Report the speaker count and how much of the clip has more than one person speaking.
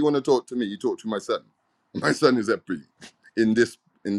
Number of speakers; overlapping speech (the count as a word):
one, no overlap